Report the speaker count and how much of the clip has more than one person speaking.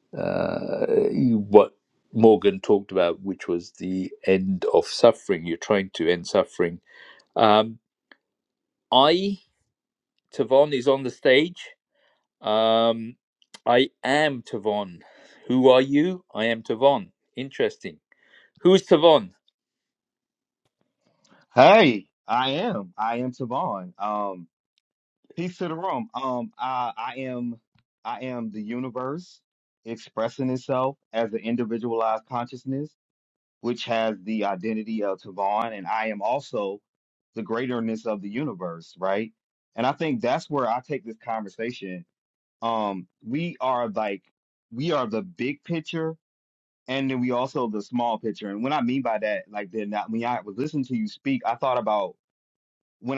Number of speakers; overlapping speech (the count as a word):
two, no overlap